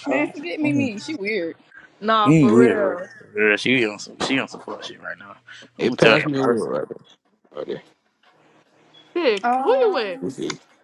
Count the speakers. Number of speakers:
4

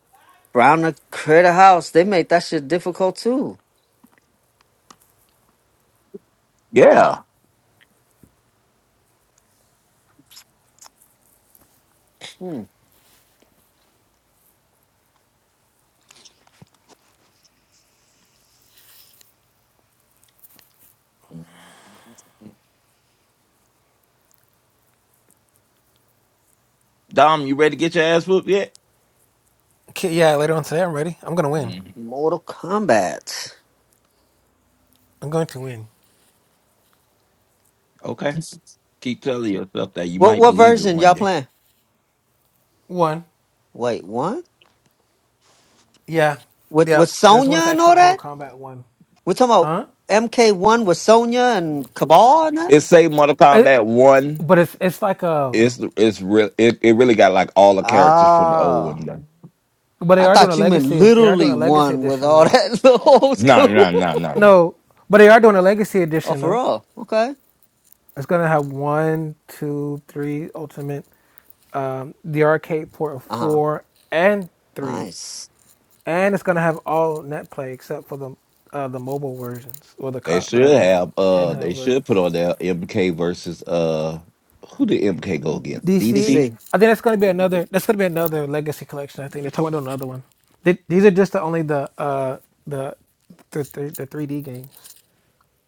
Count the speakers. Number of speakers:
3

